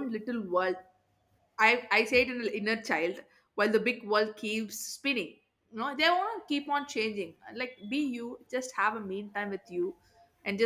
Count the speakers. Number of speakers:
1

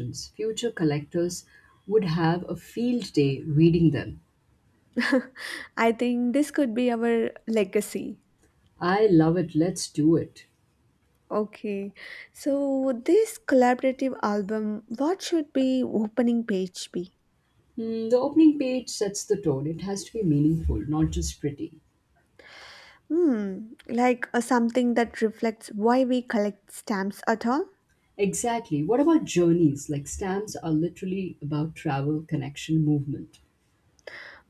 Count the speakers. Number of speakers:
2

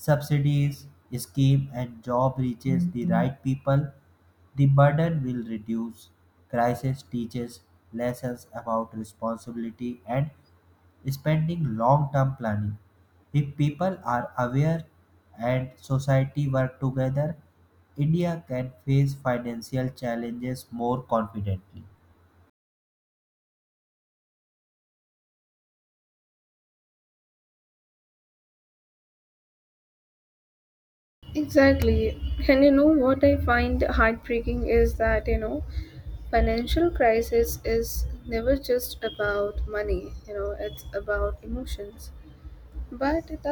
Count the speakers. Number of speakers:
2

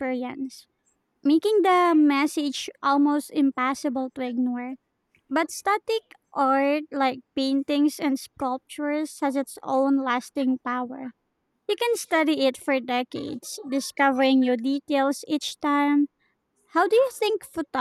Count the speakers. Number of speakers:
1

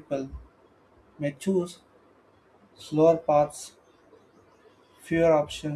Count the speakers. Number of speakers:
1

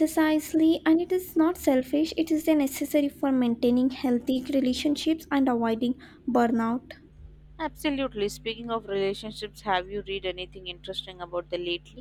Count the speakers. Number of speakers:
2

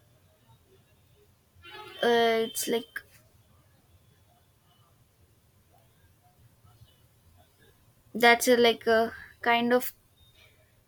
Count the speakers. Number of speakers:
1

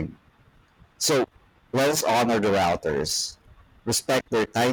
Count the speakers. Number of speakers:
1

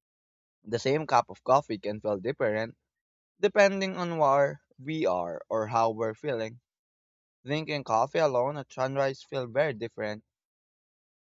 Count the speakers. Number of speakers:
1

